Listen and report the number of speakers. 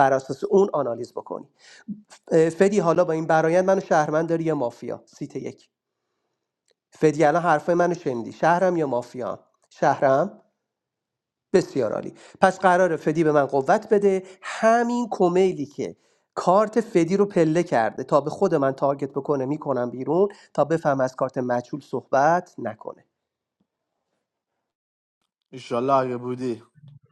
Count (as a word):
two